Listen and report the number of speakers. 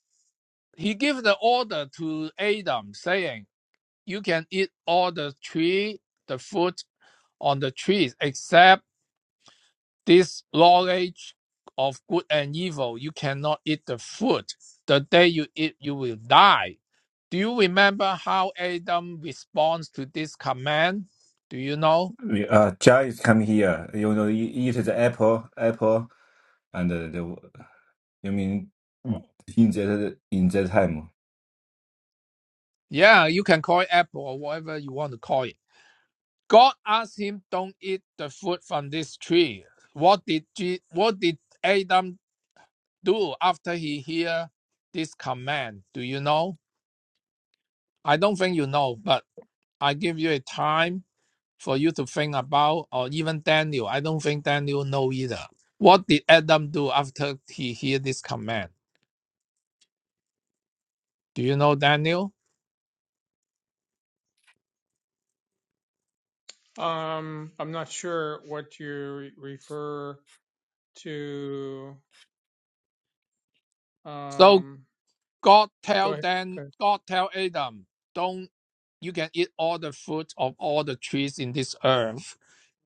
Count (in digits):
3